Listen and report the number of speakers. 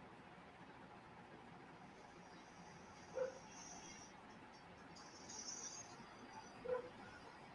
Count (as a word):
zero